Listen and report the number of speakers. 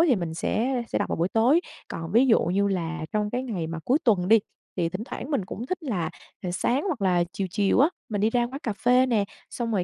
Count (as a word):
one